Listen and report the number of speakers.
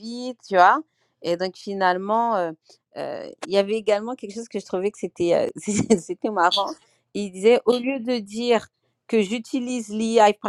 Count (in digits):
1